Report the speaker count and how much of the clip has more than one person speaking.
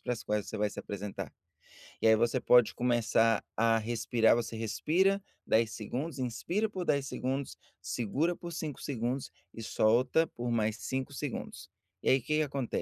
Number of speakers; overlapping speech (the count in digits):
1, no overlap